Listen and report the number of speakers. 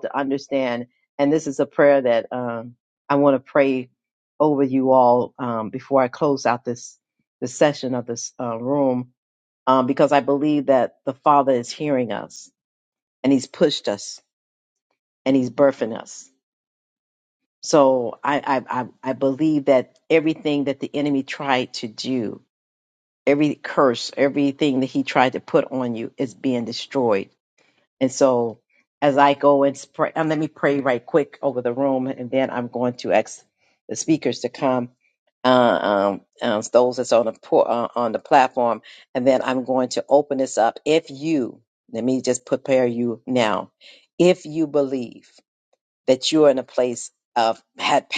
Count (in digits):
1